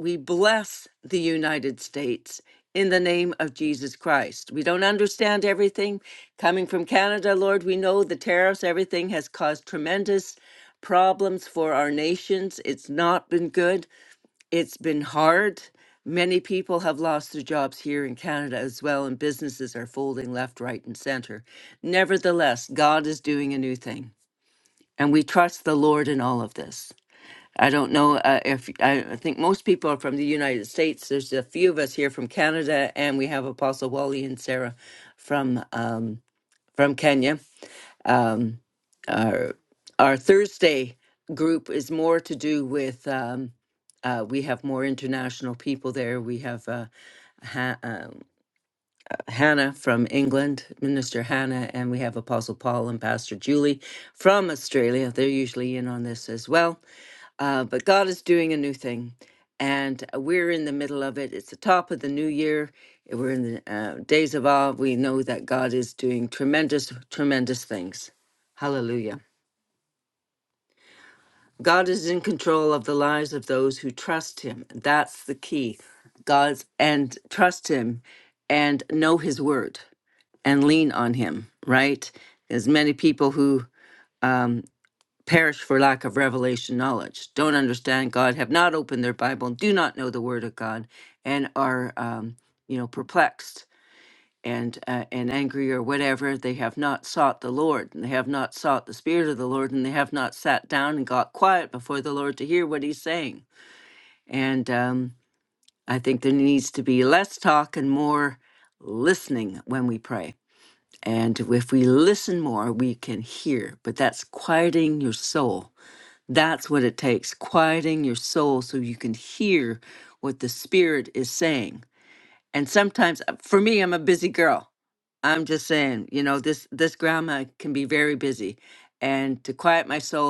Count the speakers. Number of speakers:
1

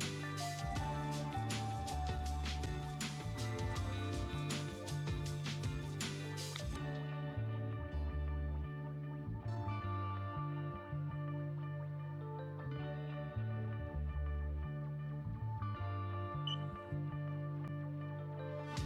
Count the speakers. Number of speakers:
0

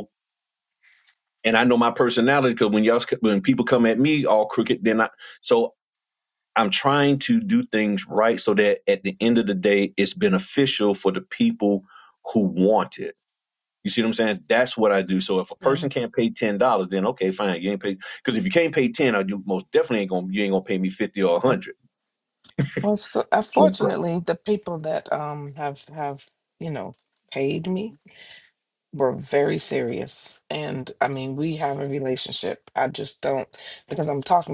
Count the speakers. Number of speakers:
2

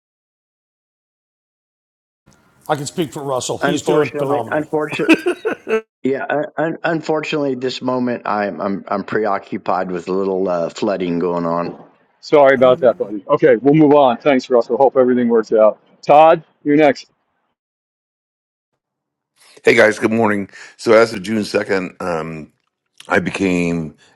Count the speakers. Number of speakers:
4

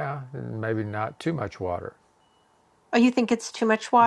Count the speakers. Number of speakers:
2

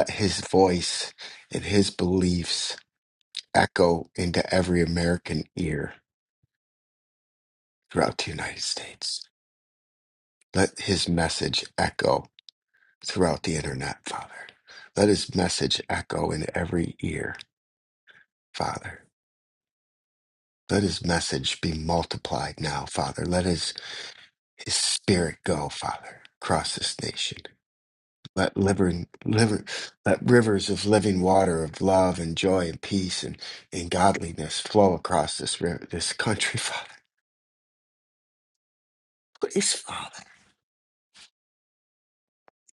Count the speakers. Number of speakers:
1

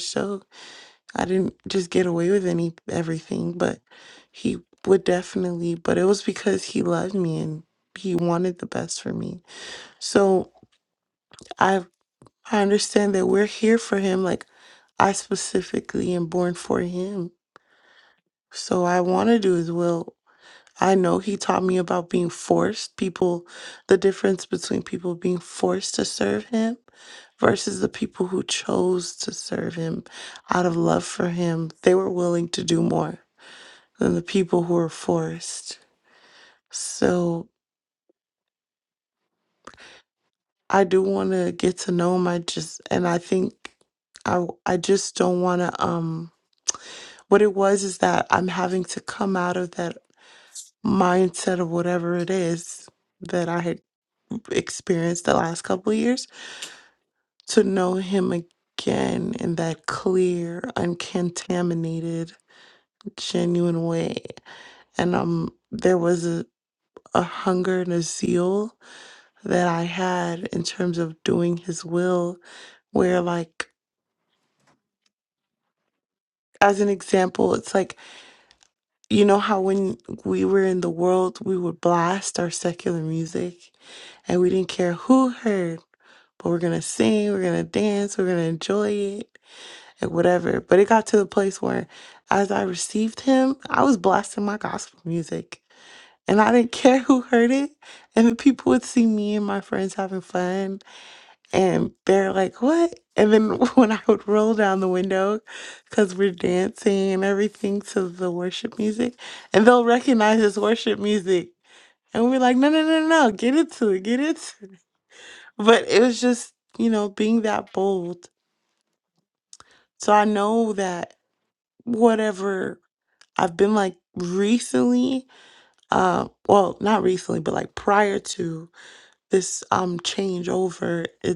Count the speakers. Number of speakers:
1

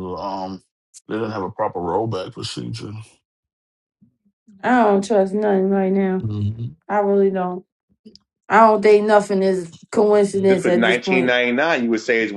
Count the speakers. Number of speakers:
3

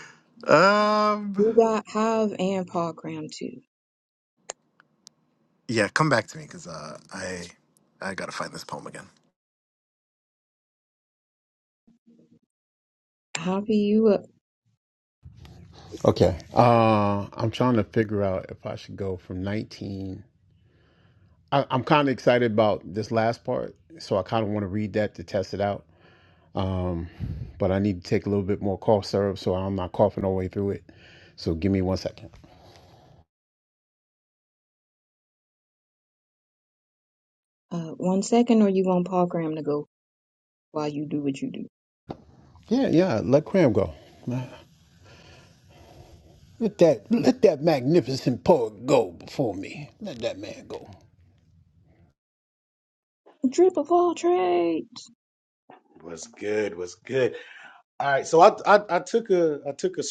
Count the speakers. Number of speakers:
4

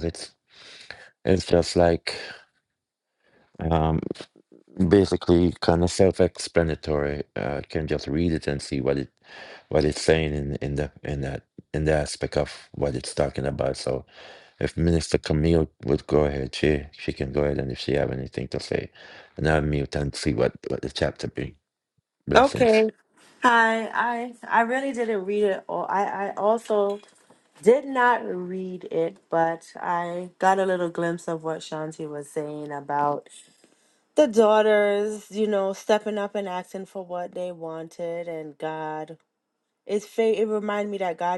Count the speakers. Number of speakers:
2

